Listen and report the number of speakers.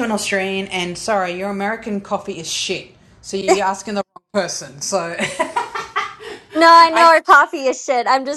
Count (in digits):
2